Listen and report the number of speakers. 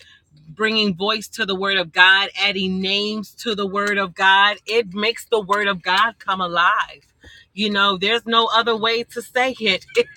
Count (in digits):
1